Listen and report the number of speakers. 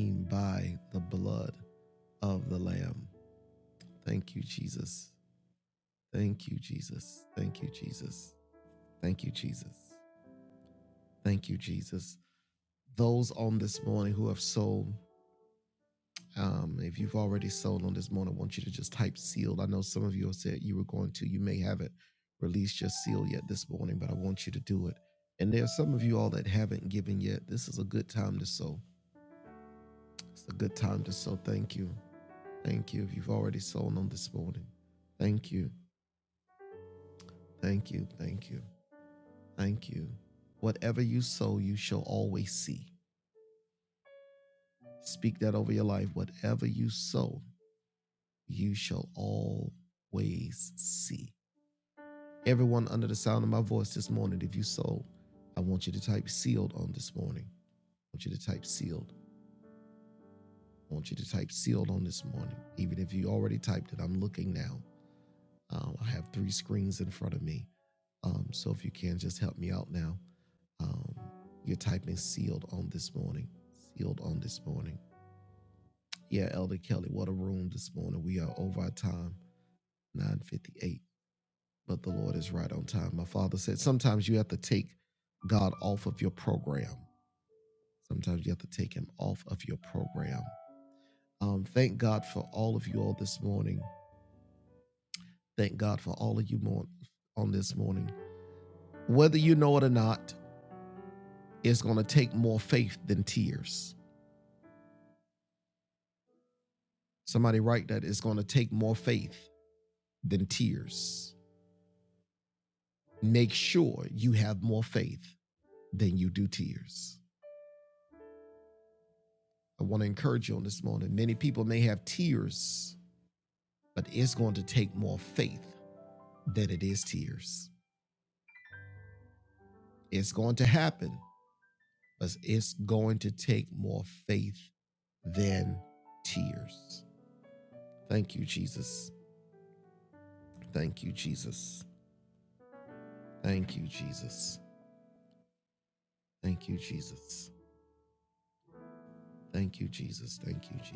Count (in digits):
1